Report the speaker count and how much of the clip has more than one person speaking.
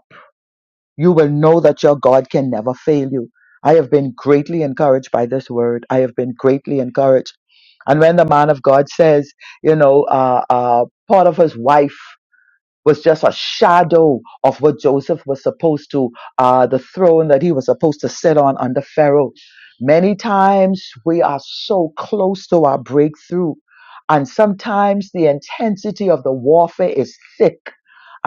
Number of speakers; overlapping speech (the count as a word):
one, no overlap